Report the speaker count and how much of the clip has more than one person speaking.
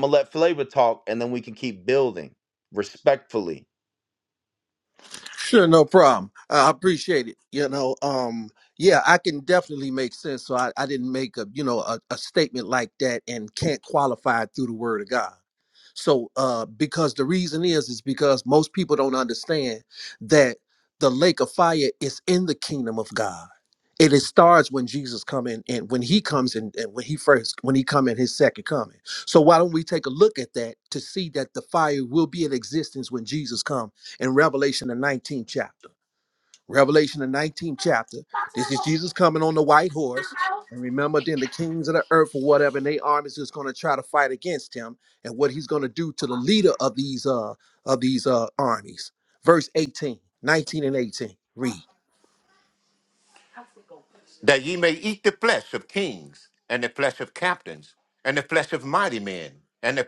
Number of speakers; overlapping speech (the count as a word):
three, no overlap